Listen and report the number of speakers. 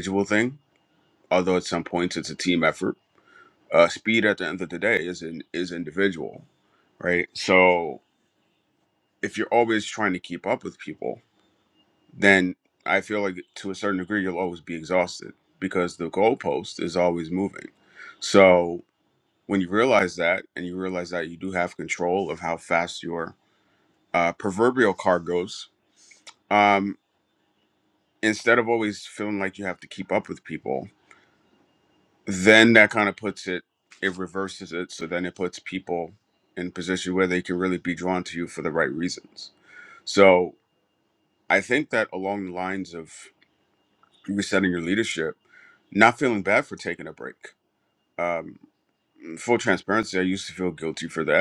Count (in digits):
1